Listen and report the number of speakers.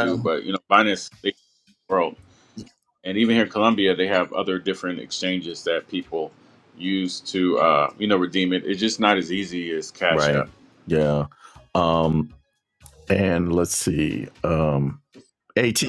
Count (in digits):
2